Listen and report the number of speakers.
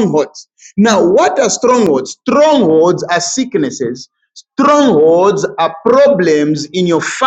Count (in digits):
1